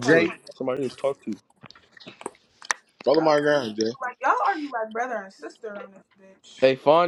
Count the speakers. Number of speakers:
3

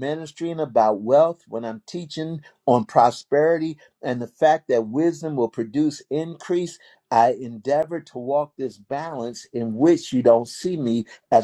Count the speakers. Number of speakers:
1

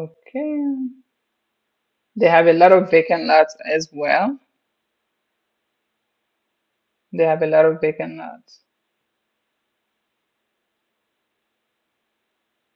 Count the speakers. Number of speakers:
1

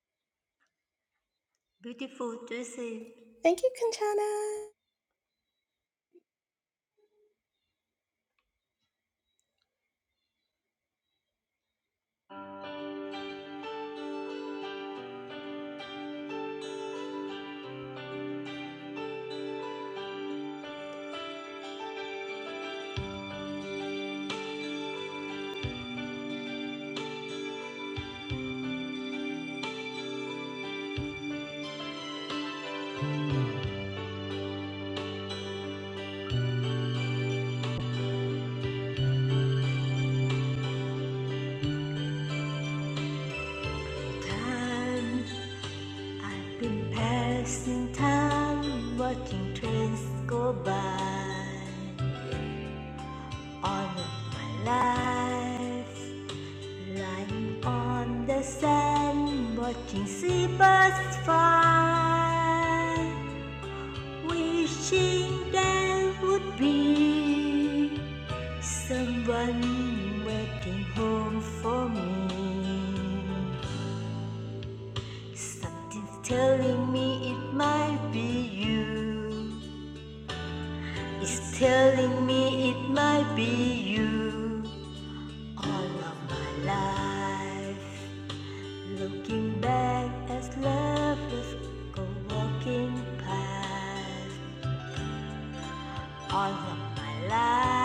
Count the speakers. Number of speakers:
2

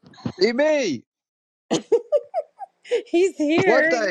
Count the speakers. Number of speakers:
2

